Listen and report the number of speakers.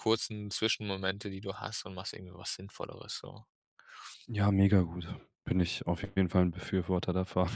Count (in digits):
2